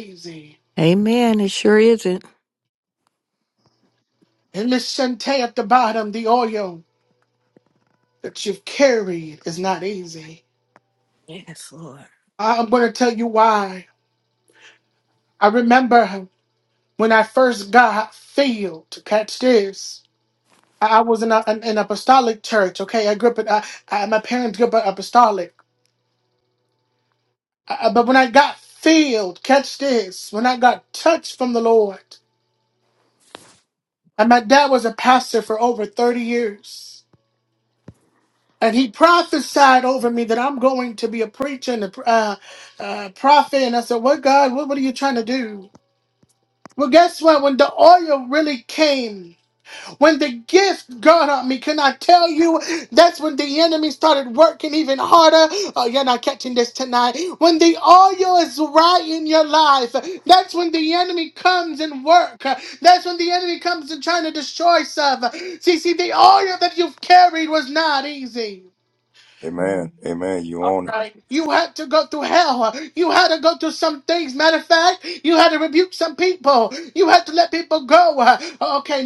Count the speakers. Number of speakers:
3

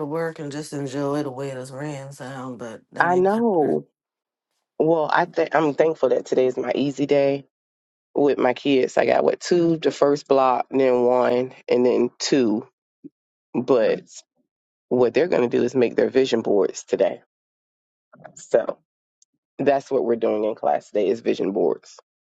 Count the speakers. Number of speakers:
2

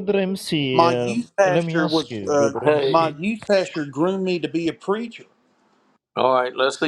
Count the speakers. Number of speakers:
3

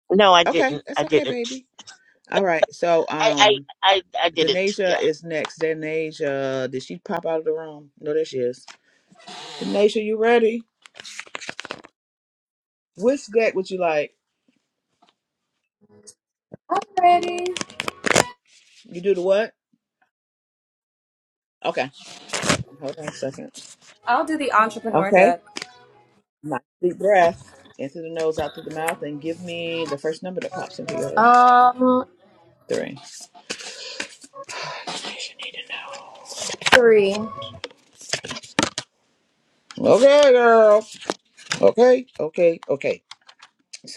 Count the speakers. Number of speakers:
3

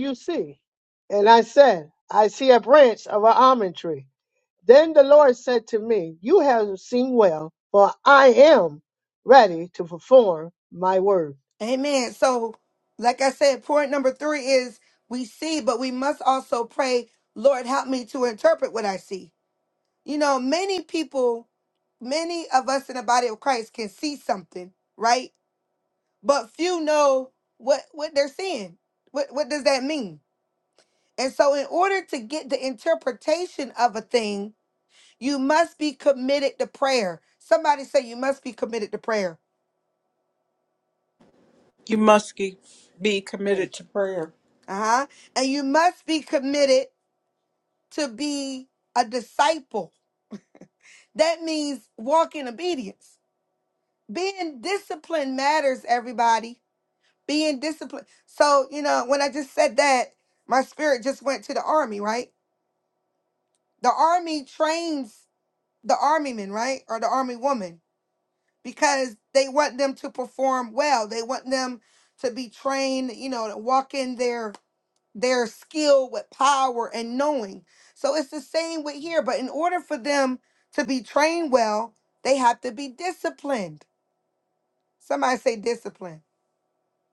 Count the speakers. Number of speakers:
3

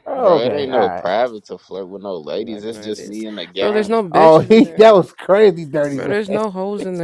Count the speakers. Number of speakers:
3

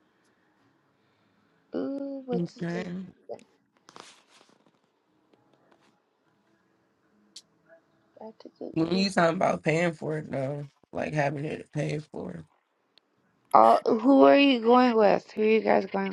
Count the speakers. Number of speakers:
2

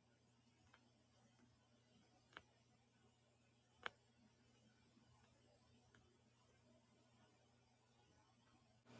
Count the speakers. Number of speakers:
0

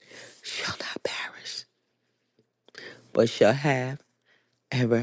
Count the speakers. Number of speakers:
1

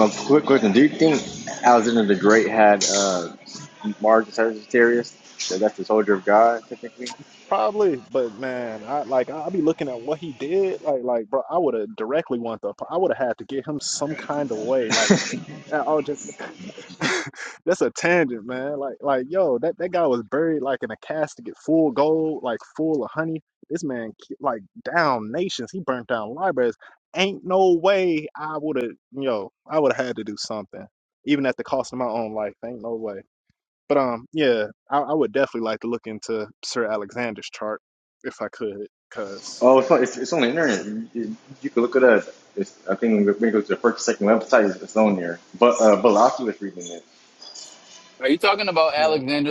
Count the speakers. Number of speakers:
3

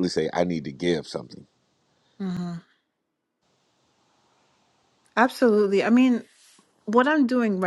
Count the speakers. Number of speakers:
2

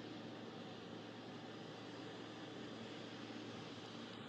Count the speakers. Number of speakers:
0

